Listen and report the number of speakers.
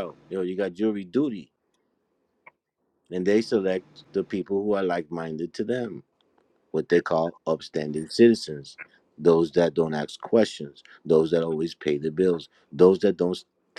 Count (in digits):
1